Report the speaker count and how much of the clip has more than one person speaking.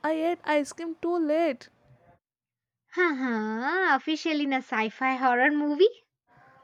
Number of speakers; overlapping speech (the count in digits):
2, no overlap